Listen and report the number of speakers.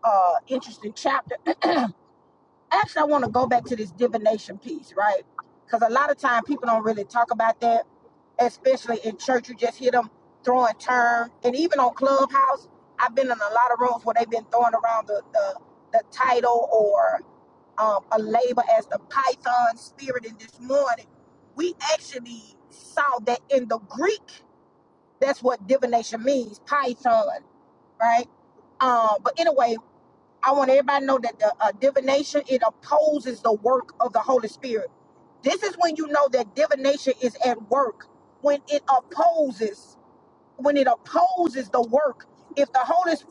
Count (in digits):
1